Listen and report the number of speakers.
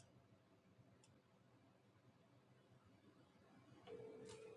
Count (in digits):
0